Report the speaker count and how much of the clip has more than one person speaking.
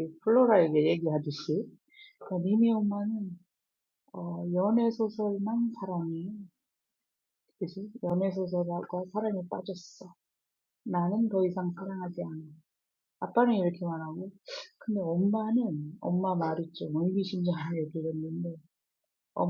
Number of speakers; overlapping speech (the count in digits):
1, no overlap